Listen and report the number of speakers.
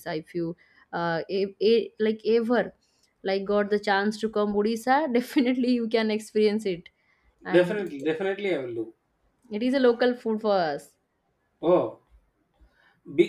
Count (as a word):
two